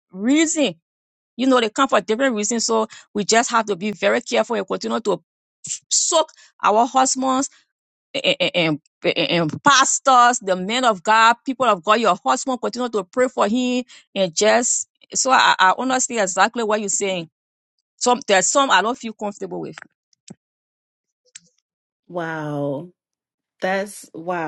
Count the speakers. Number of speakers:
2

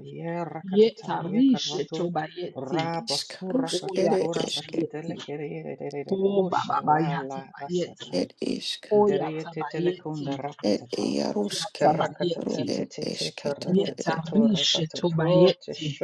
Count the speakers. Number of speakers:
3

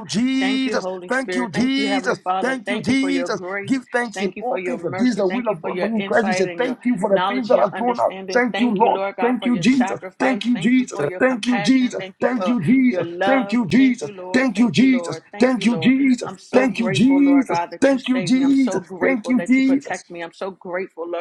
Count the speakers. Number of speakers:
2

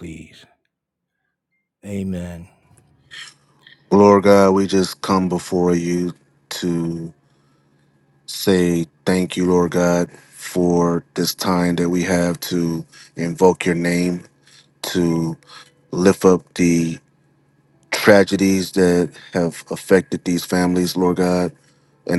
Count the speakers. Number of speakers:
2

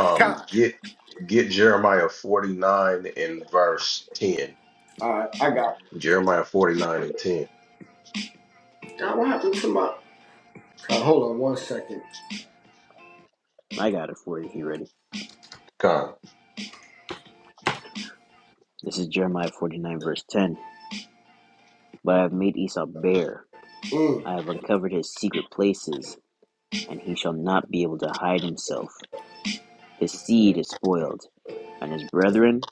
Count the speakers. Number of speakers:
3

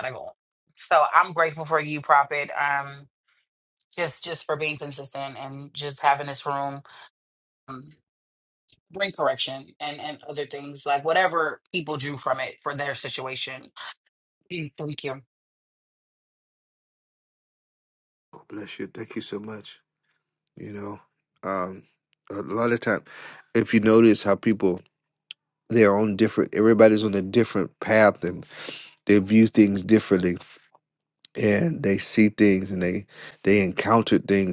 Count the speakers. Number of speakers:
2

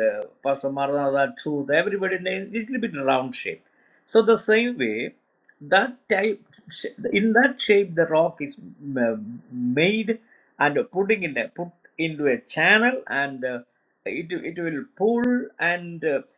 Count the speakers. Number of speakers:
1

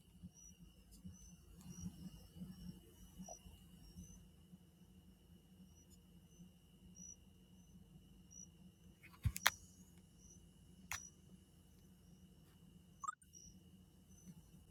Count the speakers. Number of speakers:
0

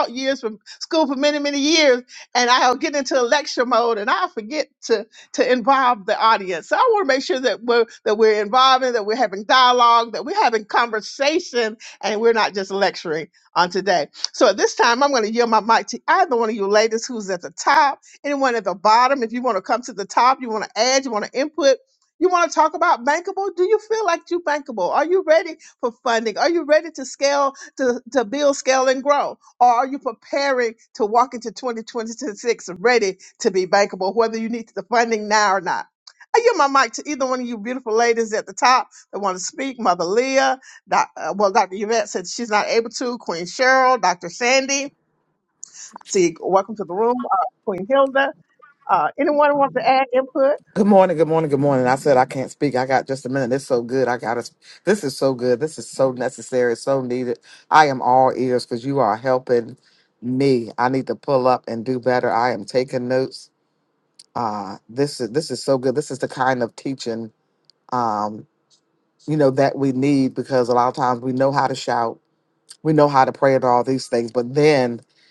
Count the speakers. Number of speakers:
2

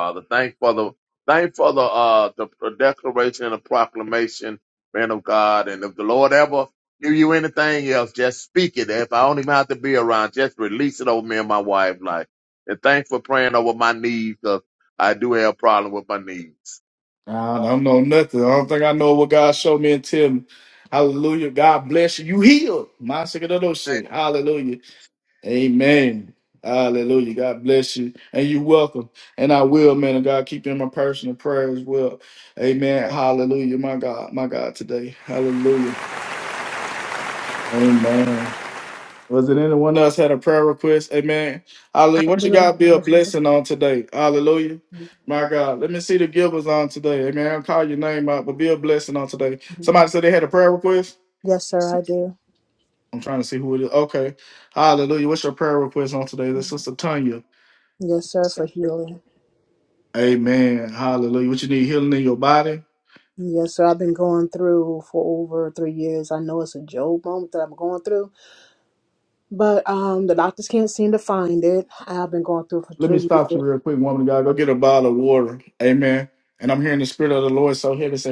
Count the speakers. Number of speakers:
3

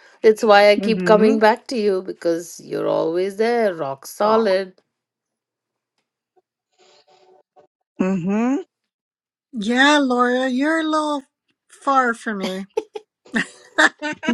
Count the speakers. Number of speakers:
3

